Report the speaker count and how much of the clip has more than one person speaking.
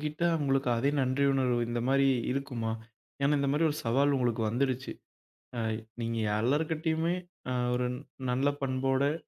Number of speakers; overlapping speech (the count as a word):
one, no overlap